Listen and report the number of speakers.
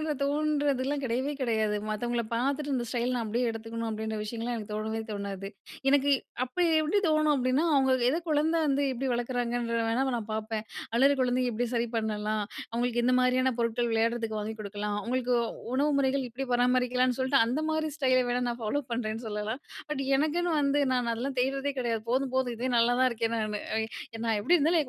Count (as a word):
one